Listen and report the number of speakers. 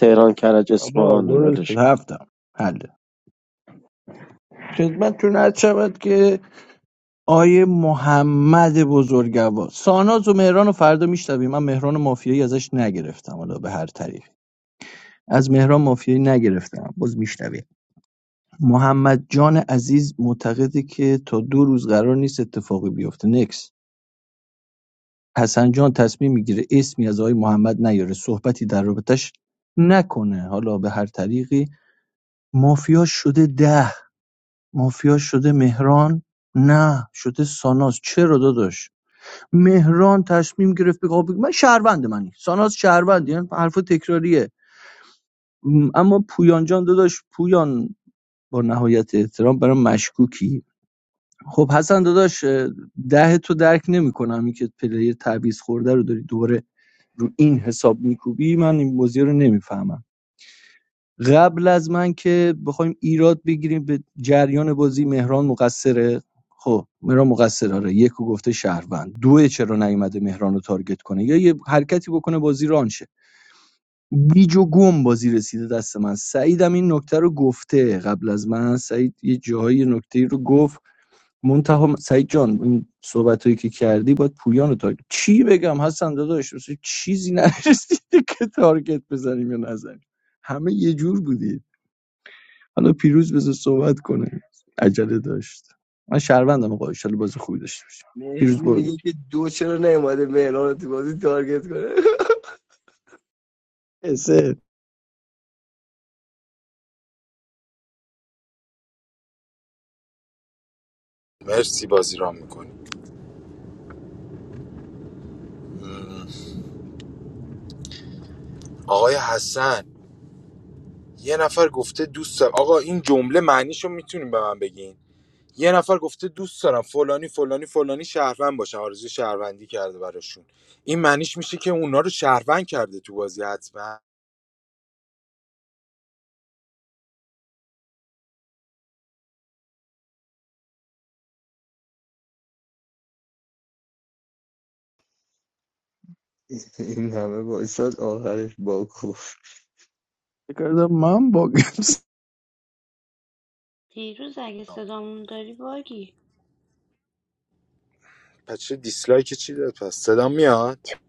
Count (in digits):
6